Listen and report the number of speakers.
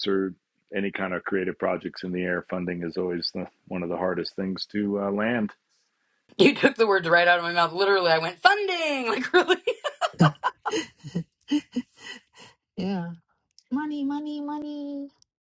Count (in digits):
3